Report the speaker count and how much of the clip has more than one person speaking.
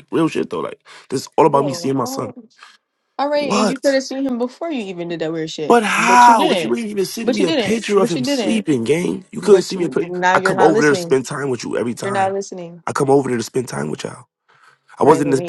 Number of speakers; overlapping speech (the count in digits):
2, about 40%